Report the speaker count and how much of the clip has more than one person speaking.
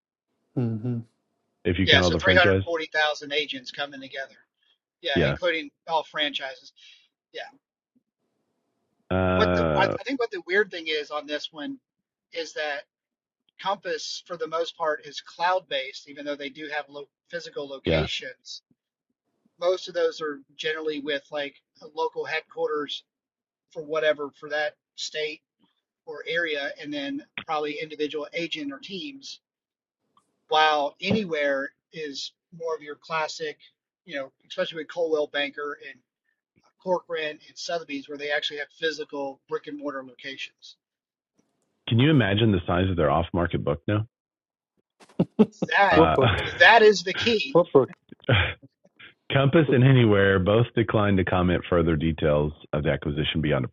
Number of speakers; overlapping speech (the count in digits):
3, about 4%